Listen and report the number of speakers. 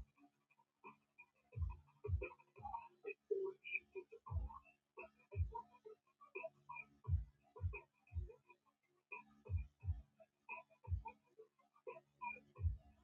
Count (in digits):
0